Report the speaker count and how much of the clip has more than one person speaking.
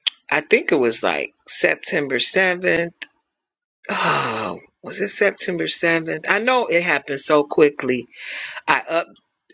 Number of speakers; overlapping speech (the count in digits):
1, no overlap